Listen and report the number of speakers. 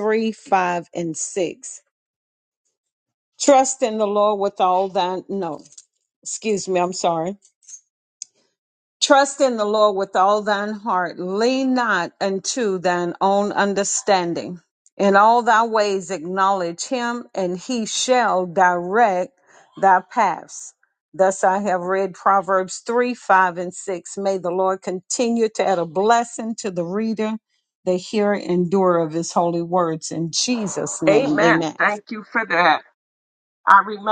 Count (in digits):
2